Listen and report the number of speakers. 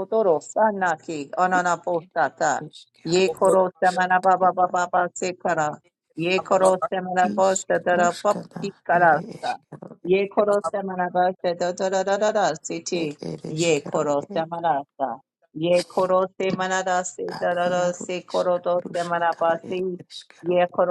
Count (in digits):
2